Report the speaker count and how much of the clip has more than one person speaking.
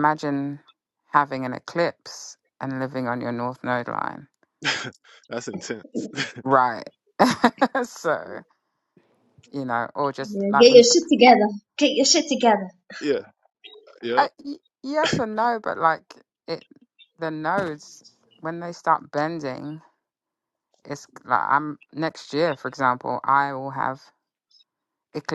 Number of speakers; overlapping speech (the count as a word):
three, about 3%